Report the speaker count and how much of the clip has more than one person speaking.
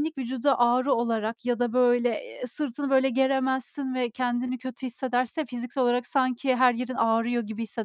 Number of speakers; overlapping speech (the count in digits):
1, no overlap